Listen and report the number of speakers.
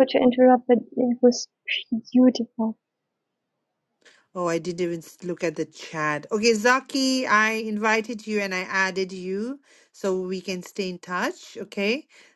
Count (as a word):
two